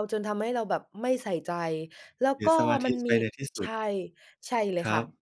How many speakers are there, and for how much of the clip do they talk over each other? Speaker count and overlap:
two, about 22%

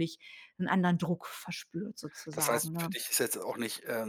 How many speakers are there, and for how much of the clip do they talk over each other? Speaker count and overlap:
two, about 15%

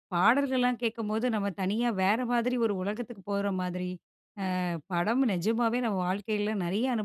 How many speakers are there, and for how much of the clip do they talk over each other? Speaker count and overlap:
one, no overlap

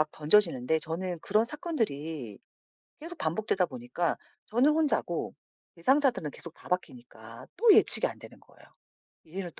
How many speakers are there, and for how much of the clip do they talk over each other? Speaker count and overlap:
one, no overlap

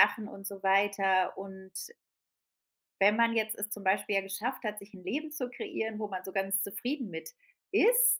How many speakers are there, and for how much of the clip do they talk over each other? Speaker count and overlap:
one, no overlap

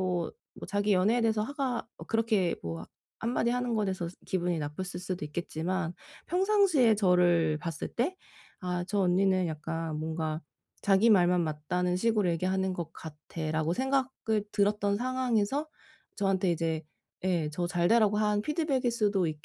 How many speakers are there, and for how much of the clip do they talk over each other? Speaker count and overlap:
one, no overlap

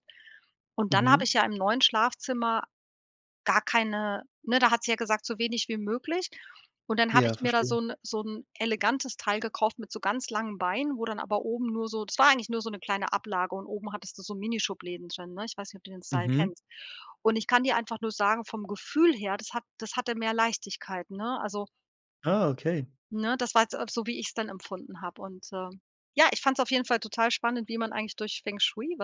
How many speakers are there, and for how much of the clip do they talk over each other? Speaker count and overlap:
two, about 4%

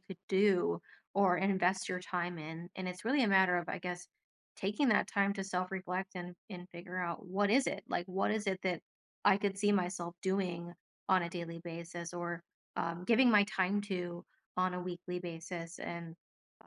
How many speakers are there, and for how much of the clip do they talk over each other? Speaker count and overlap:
one, no overlap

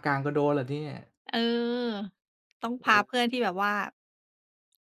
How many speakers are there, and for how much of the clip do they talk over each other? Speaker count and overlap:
two, about 3%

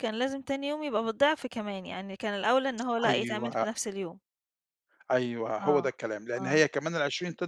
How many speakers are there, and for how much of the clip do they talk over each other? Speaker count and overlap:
two, about 15%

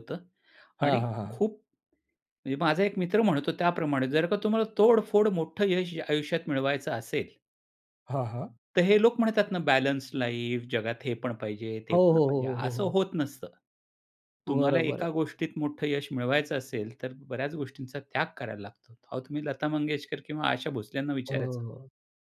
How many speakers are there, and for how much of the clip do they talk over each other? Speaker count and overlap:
two, about 10%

